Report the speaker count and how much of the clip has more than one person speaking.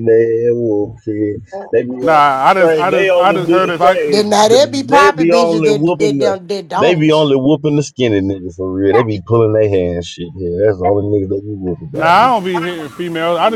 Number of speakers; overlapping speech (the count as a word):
three, about 28%